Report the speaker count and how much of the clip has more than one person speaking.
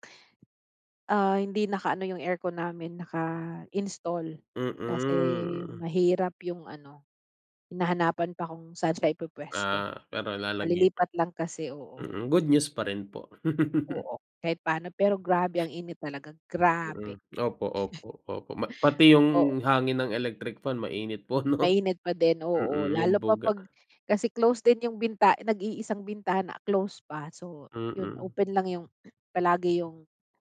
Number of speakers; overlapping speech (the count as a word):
two, about 10%